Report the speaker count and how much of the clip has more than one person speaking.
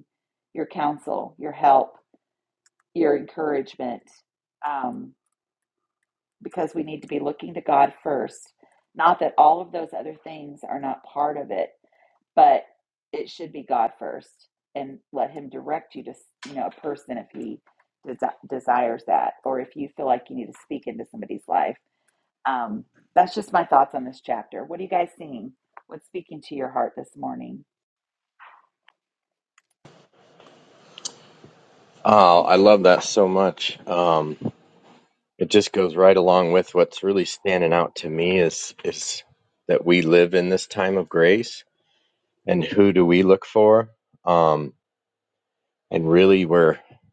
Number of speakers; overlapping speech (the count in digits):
2, no overlap